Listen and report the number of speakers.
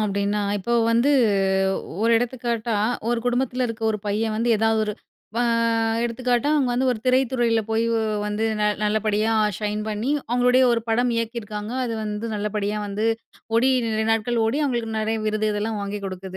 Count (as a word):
one